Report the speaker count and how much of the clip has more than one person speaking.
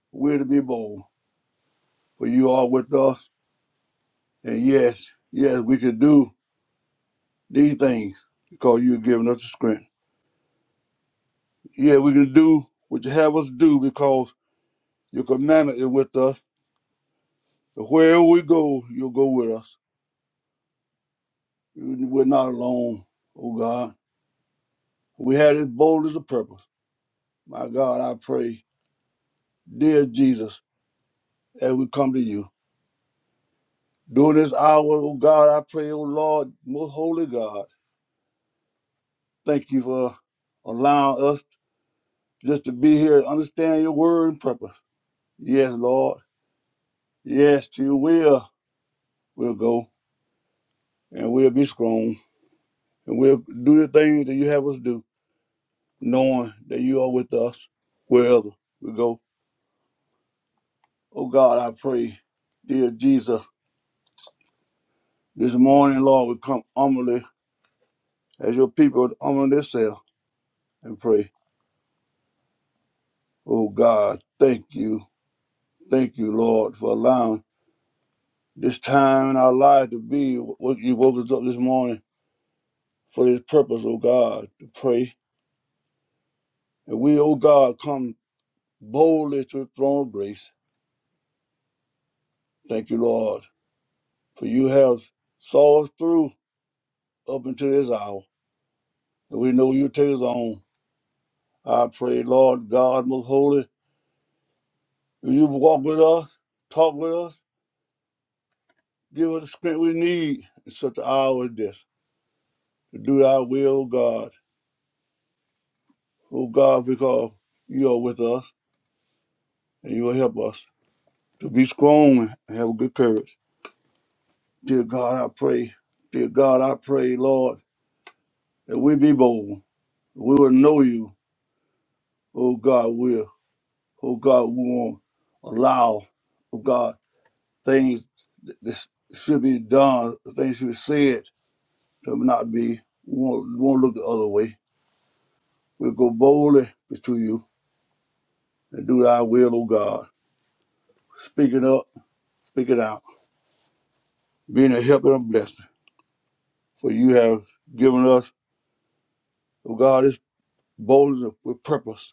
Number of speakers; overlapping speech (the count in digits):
1, no overlap